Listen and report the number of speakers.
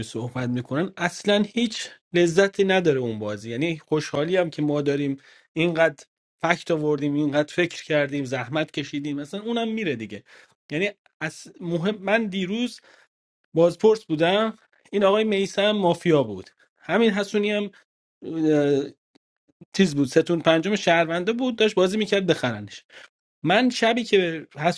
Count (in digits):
1